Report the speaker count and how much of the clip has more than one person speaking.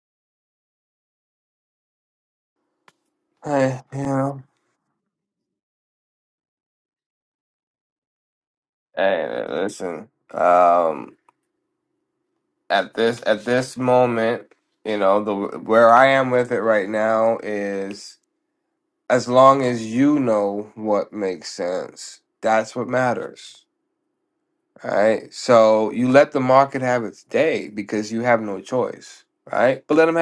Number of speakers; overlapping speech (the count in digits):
1, no overlap